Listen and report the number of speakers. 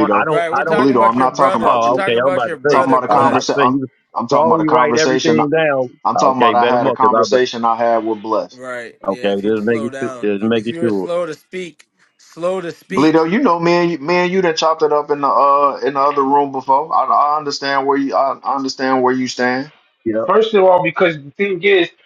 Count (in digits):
4